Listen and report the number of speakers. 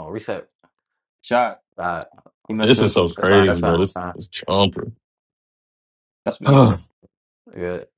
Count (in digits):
3